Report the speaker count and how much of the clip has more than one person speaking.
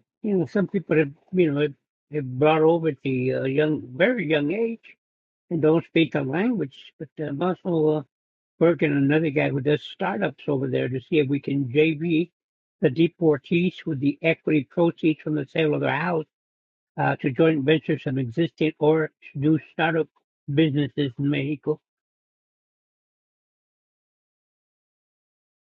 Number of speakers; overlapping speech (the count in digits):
1, no overlap